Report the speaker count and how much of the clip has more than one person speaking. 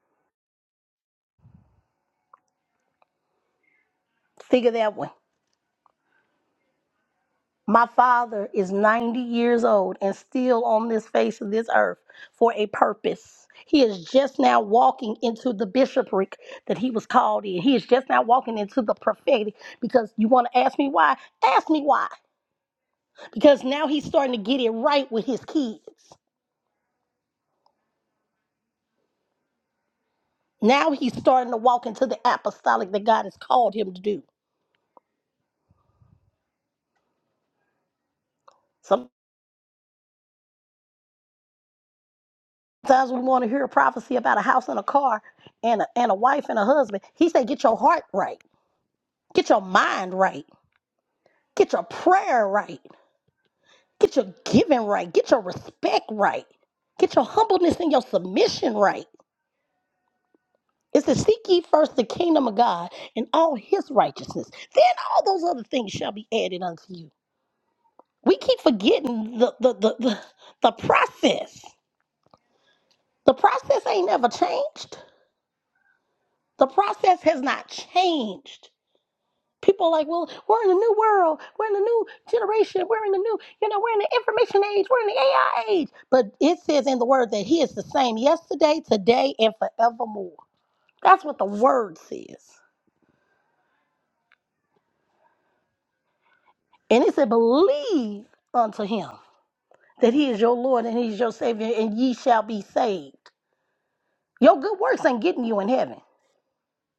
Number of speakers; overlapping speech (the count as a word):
one, no overlap